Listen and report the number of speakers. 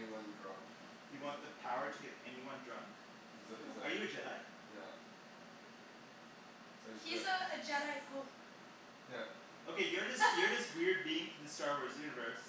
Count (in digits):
3